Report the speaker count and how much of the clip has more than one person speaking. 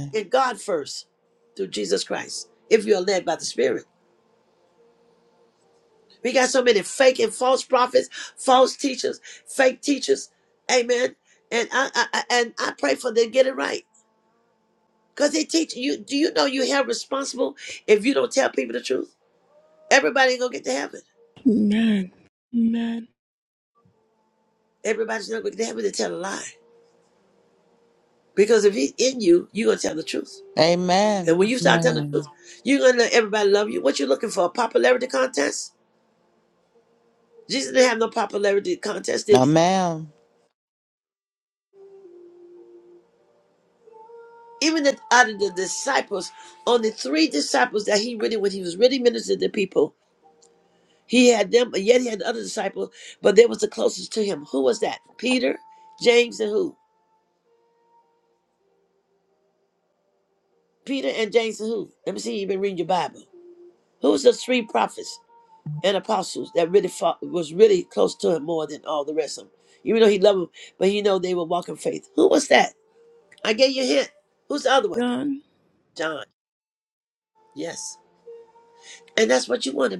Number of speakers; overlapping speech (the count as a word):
three, about 1%